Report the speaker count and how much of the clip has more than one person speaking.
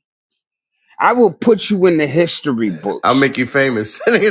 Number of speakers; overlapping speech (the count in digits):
2, about 4%